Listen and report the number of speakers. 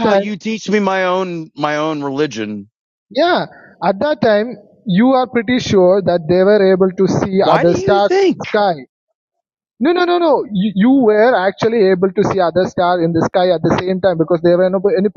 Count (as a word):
two